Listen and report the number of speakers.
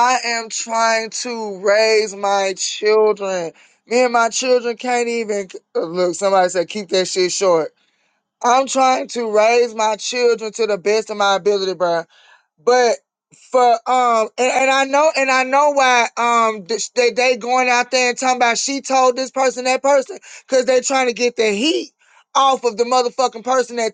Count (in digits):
1